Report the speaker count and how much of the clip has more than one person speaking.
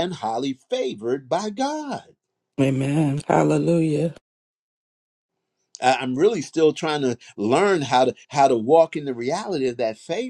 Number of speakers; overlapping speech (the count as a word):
two, no overlap